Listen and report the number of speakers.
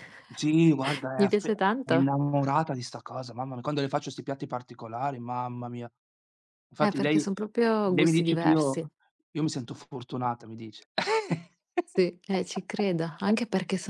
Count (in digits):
2